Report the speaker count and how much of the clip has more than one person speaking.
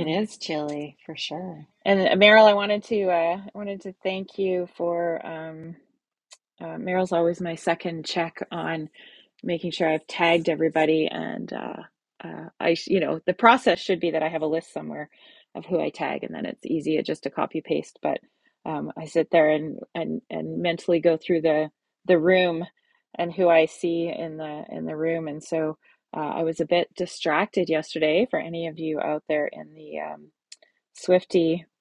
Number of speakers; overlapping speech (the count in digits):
2, about 1%